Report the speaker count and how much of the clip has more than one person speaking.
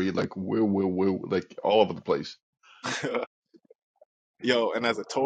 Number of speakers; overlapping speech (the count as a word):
two, no overlap